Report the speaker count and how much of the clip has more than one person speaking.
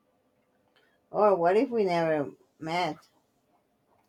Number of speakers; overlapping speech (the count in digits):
1, no overlap